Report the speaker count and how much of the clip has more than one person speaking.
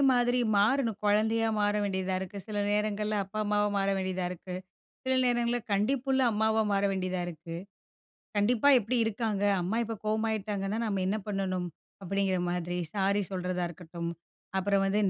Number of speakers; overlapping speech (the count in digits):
1, no overlap